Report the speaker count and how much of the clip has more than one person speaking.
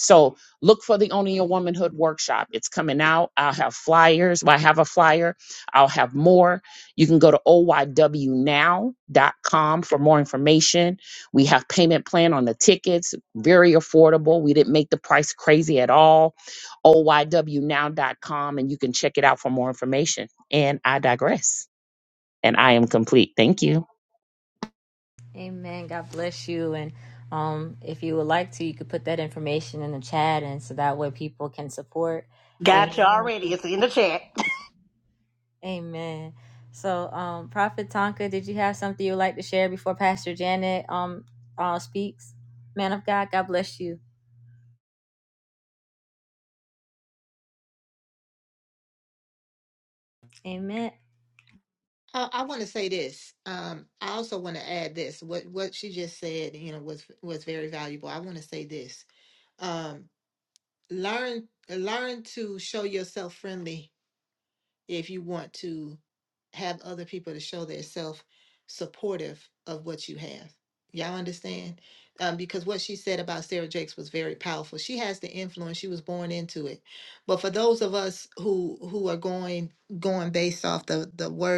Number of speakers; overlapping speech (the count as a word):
four, about 1%